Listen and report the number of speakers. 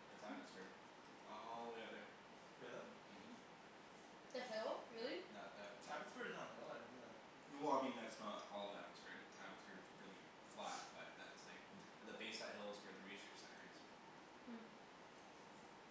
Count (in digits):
3